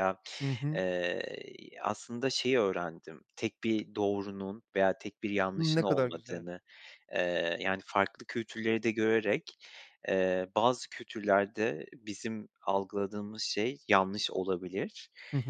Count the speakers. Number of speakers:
two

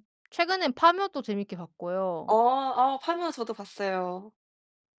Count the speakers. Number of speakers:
two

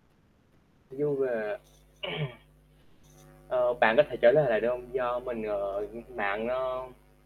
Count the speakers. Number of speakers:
one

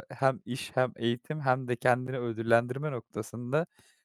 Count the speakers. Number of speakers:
one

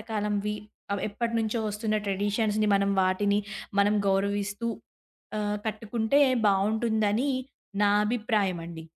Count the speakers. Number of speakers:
one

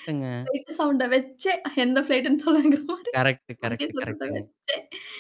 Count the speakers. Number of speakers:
two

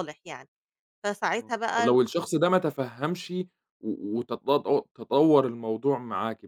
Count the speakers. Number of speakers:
two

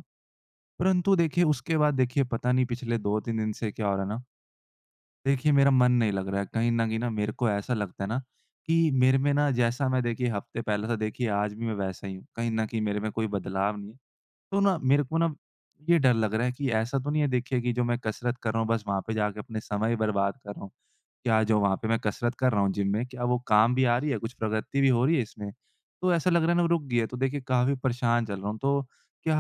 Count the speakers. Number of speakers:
one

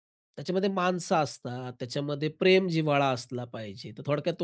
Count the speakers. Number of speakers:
one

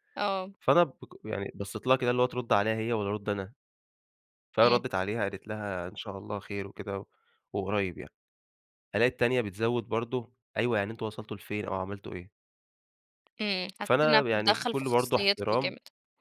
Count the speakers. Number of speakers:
two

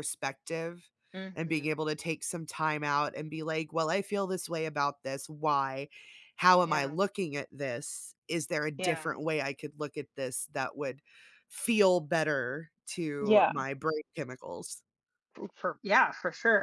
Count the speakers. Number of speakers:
two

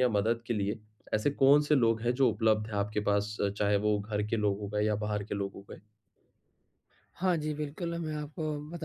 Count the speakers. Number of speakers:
two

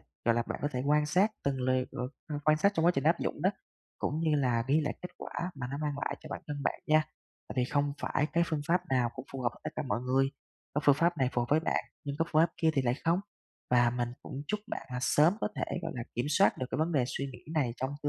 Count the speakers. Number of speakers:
one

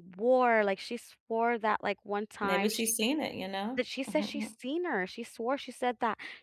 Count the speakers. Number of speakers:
two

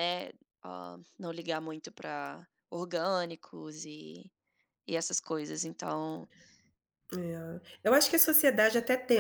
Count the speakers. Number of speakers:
two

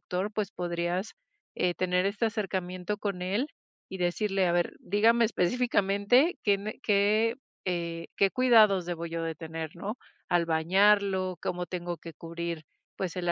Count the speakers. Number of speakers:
one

